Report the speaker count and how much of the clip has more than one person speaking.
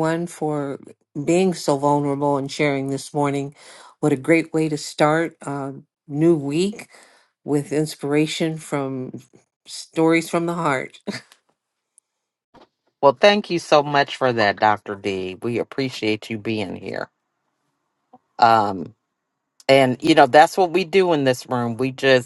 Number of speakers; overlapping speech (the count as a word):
two, no overlap